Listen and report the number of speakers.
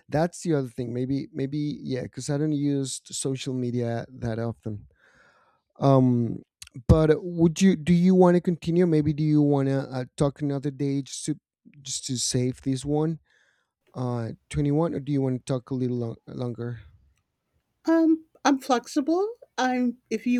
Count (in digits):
2